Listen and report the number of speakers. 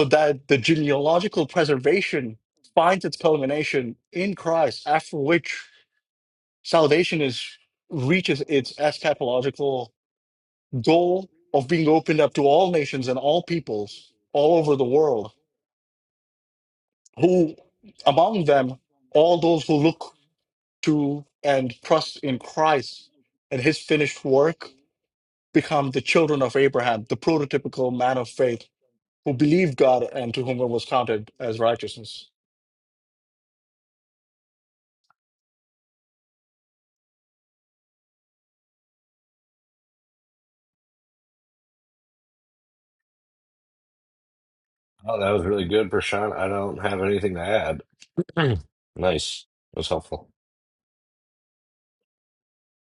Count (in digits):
2